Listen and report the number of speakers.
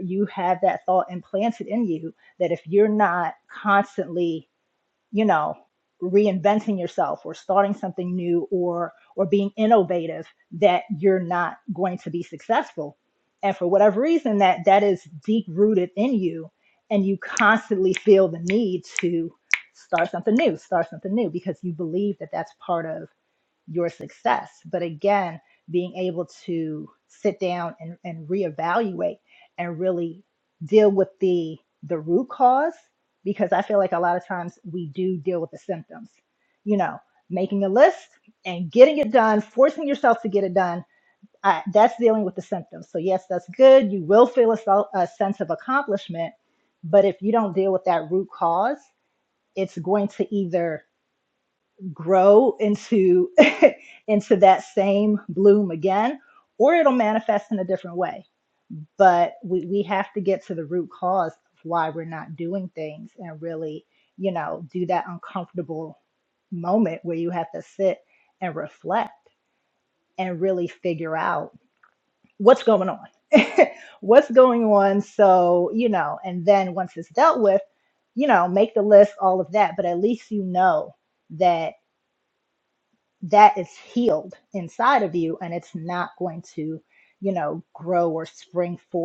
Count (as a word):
one